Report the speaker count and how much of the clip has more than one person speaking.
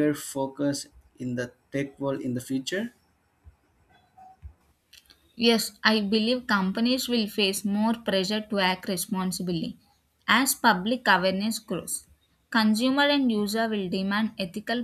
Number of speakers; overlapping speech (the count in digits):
2, no overlap